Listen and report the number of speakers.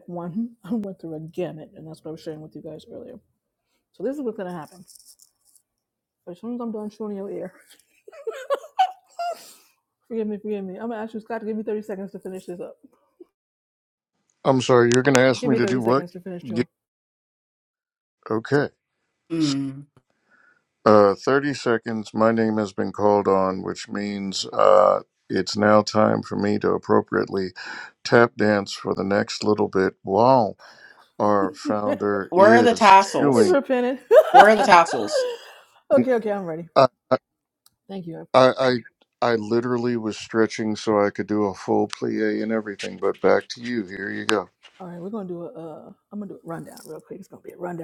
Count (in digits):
3